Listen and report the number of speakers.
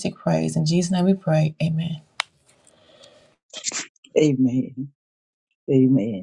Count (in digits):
2